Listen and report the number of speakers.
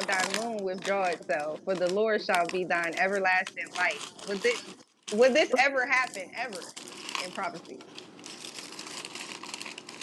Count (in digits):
1